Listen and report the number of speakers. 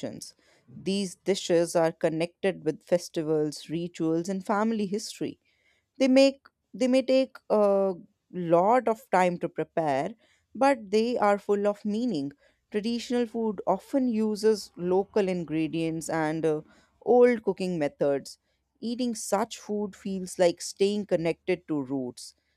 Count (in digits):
1